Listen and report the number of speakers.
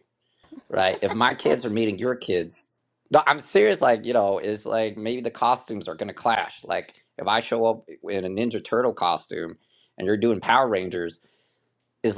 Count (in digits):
1